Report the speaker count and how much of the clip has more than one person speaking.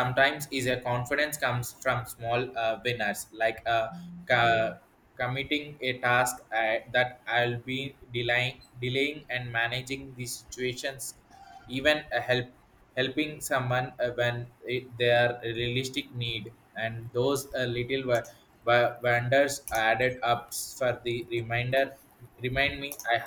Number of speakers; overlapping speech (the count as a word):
one, no overlap